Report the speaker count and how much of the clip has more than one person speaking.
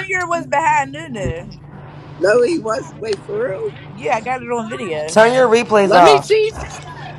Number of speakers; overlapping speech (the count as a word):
three, about 8%